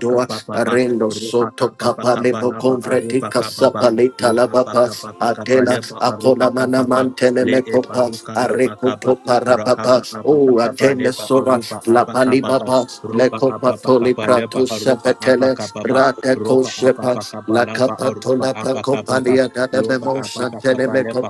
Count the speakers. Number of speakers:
2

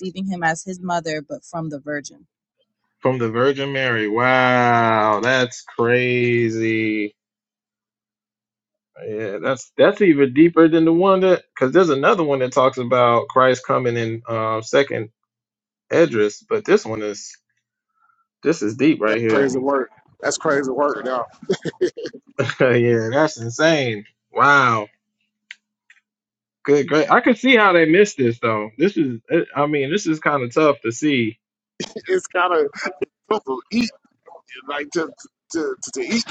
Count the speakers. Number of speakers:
3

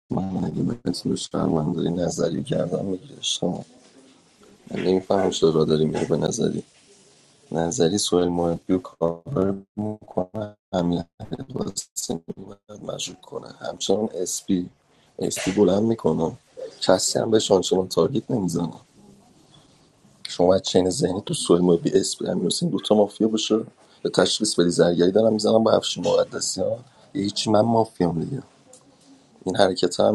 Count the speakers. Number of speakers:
1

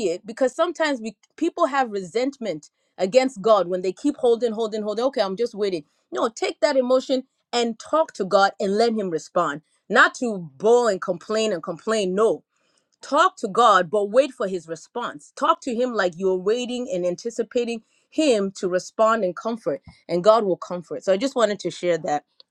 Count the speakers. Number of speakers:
1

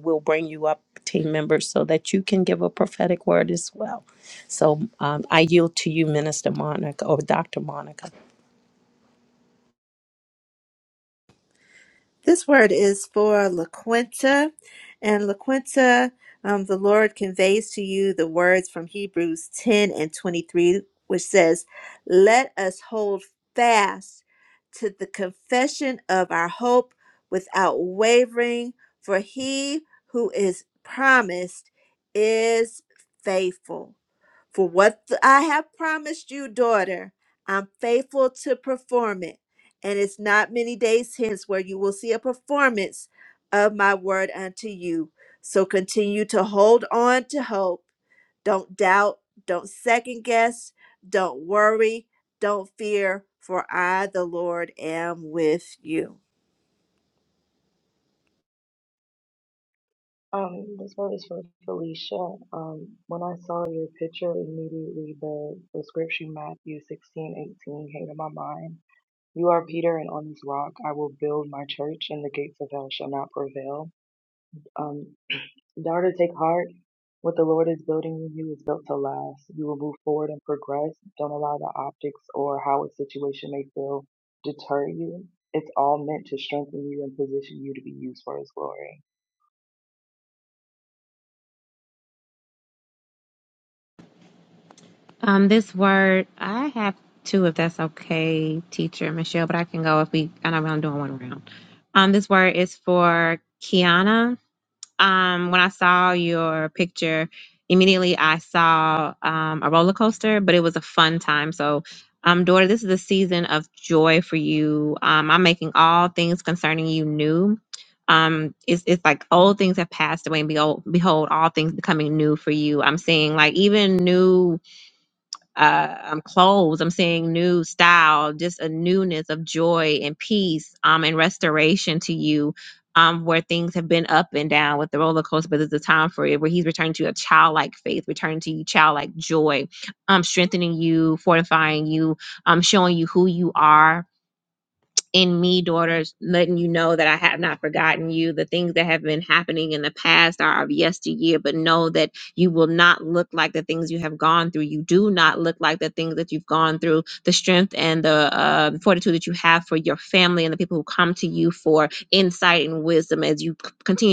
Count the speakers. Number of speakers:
4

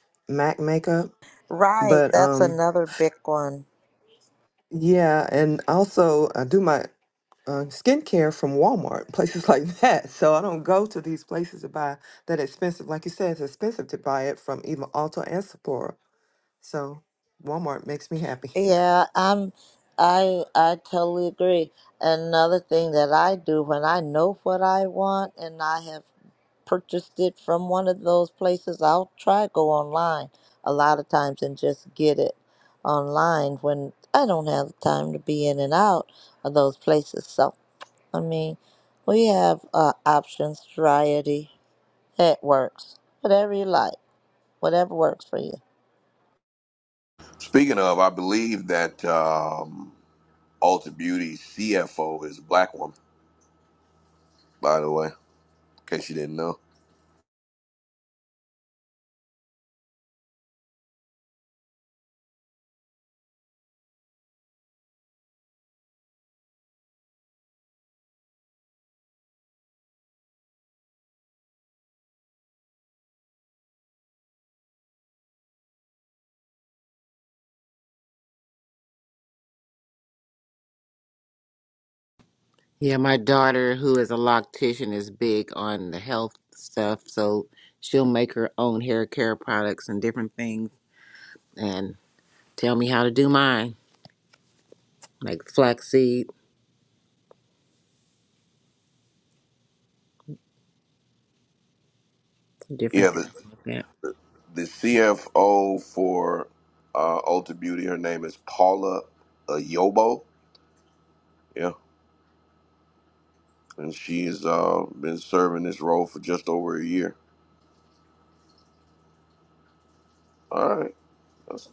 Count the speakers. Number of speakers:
4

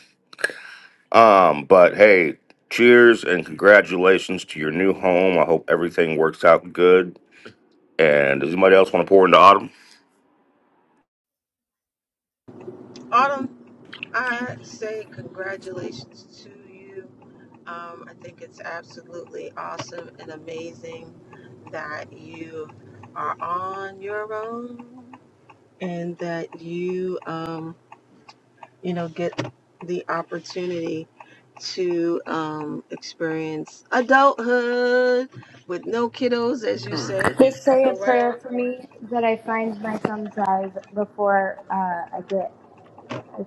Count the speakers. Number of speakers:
3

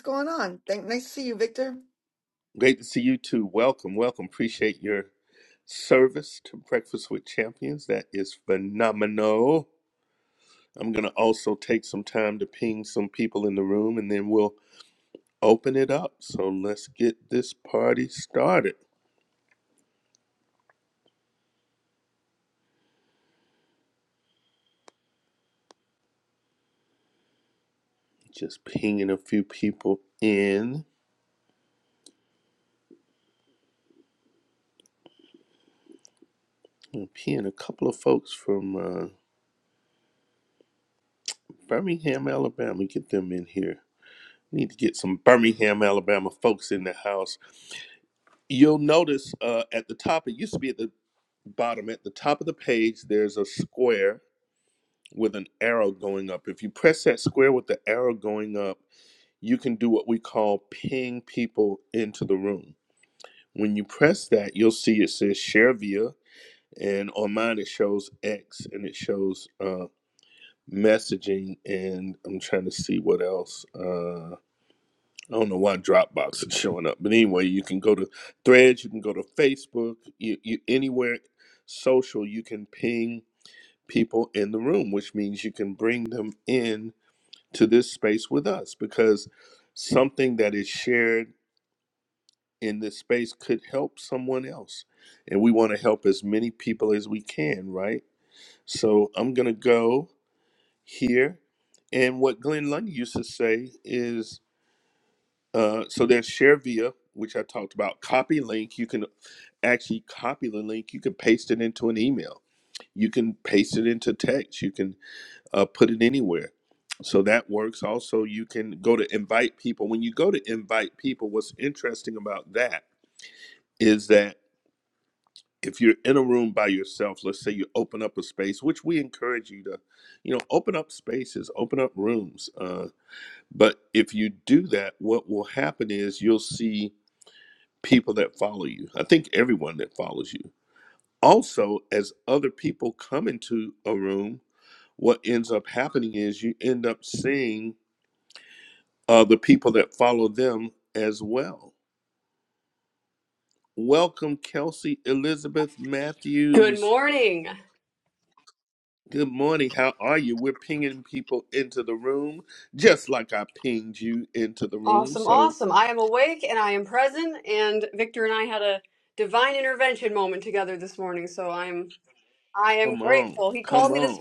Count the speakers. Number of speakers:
3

